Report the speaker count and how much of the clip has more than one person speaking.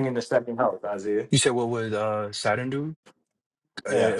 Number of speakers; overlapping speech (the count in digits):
2, about 9%